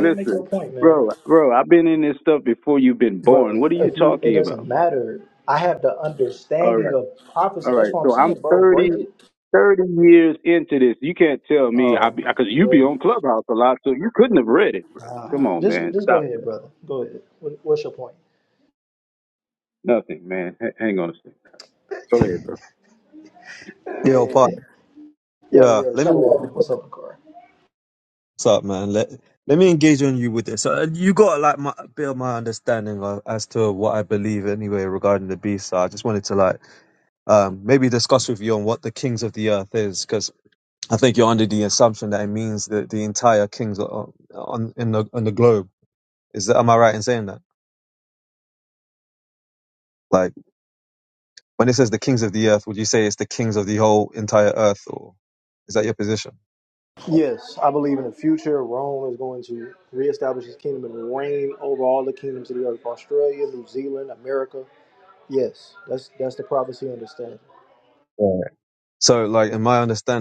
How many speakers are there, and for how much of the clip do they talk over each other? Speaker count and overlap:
3, about 10%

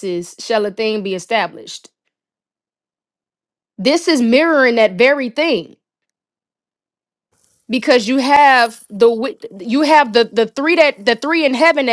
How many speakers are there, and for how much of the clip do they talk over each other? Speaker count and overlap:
1, no overlap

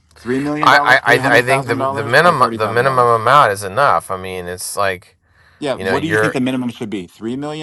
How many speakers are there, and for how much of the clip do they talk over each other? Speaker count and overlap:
2, about 39%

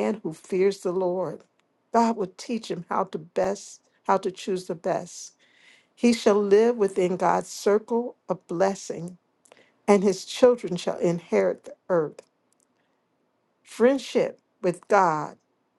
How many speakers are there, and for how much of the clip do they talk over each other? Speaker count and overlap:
1, no overlap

